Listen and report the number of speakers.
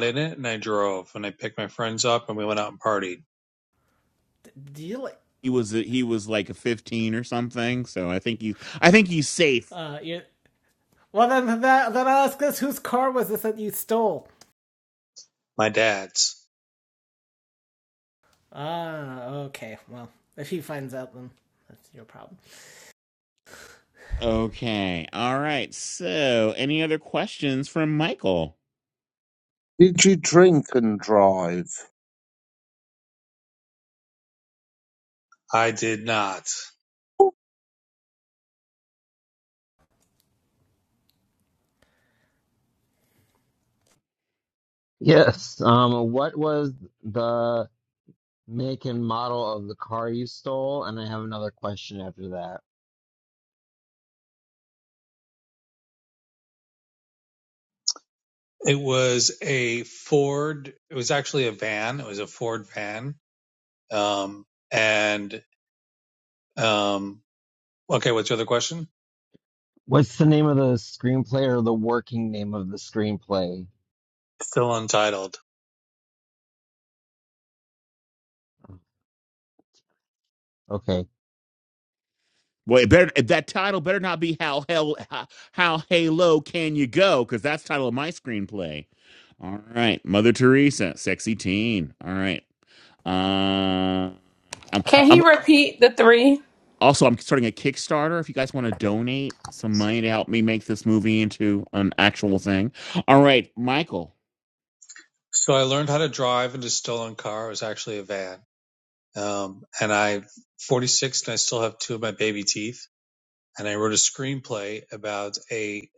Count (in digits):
6